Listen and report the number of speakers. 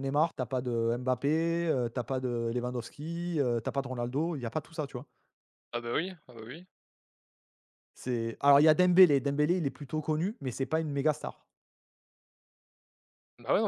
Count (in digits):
2